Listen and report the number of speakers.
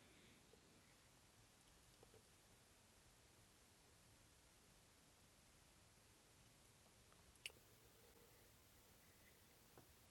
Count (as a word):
zero